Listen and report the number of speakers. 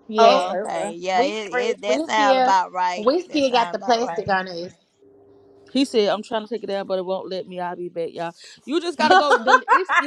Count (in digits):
3